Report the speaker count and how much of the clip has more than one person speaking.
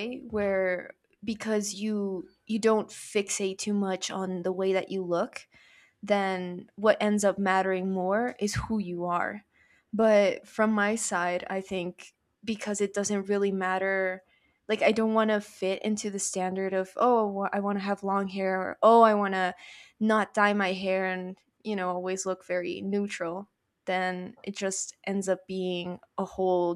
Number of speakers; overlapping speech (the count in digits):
1, no overlap